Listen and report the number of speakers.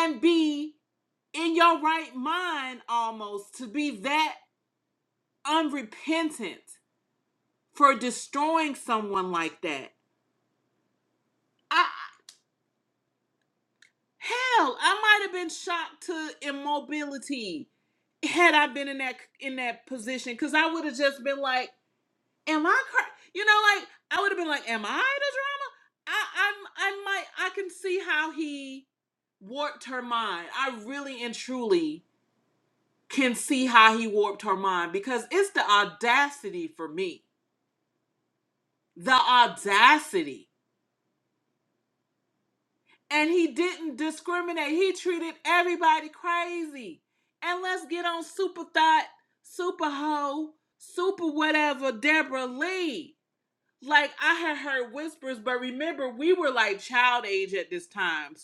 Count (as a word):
one